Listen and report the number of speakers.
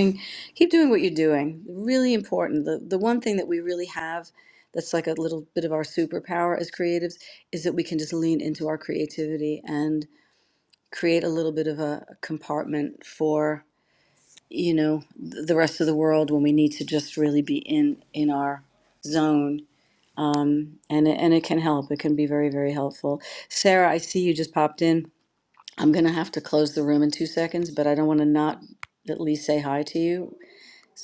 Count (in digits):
1